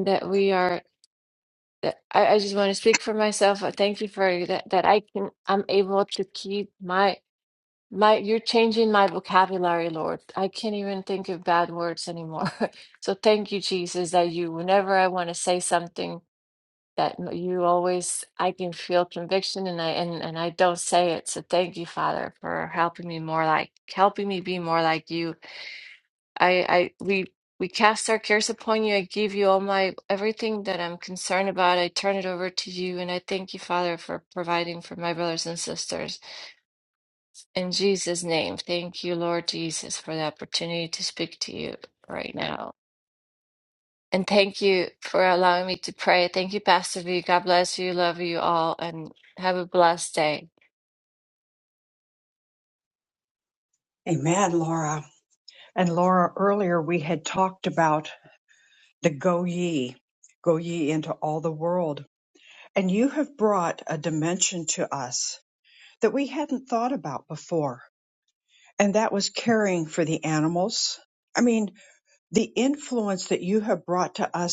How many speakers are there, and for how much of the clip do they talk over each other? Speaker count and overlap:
2, no overlap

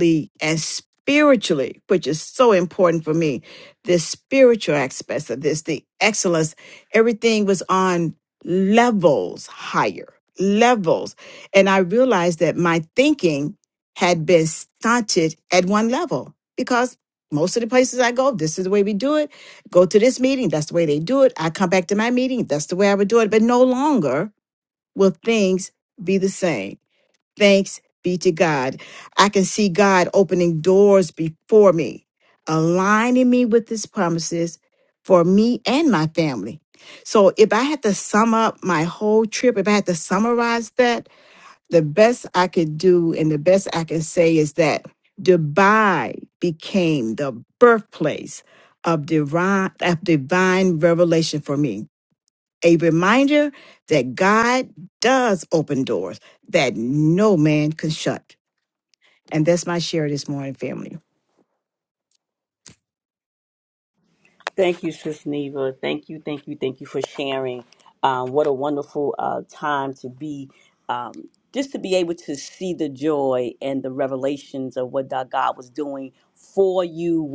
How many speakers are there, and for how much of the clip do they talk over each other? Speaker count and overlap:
2, no overlap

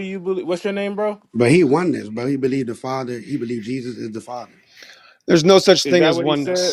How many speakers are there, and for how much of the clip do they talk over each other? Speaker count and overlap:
3, about 13%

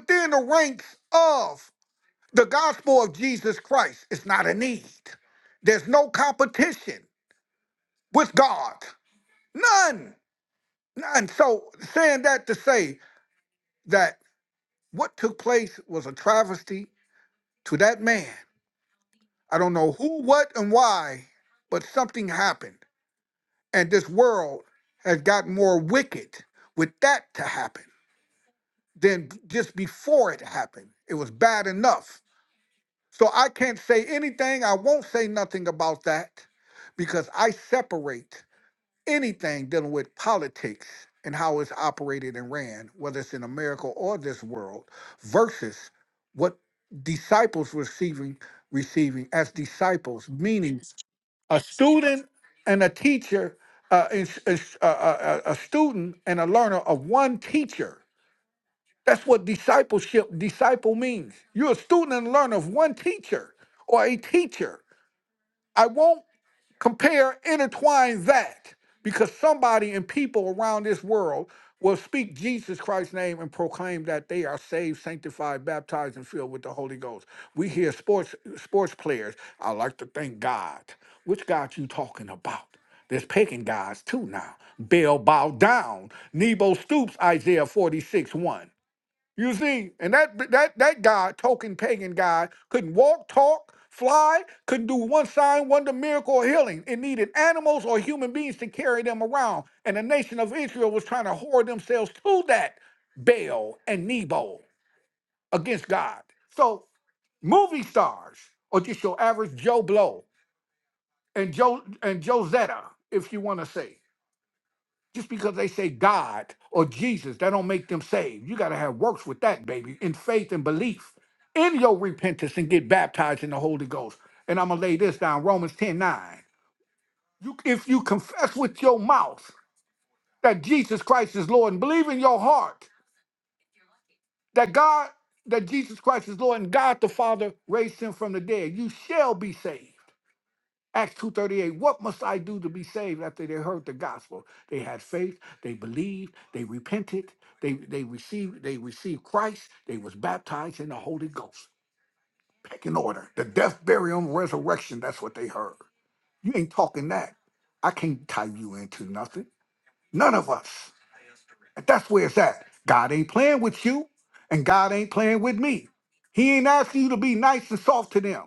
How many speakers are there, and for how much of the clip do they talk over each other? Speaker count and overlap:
1, no overlap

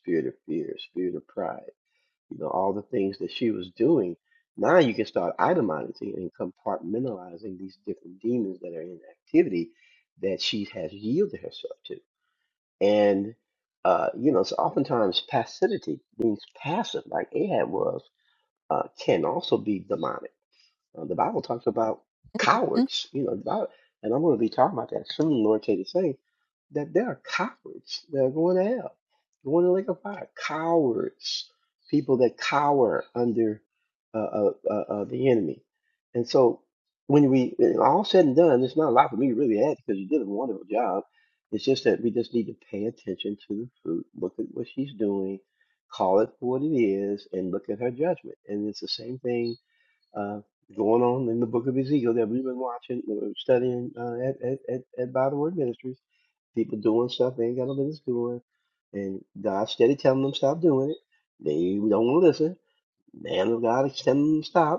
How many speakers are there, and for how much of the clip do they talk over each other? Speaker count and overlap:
1, no overlap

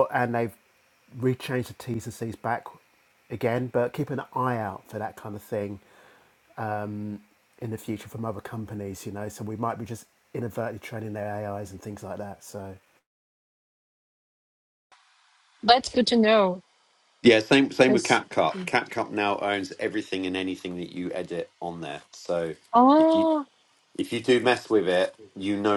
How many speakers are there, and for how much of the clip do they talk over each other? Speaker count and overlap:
3, about 1%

